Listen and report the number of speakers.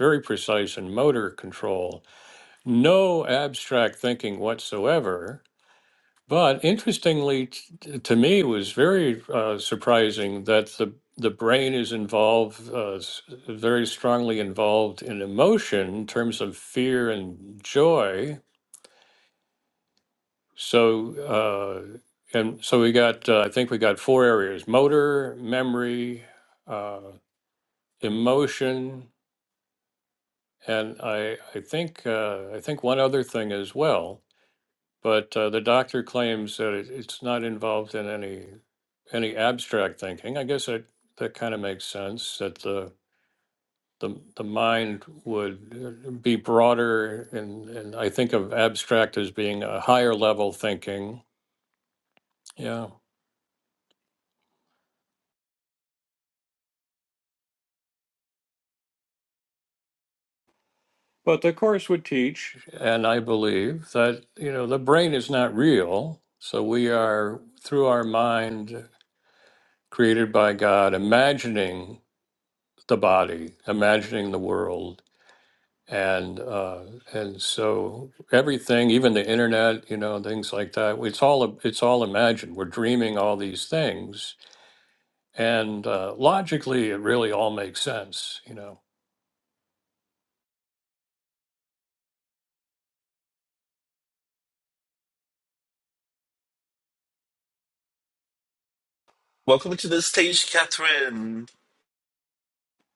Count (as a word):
two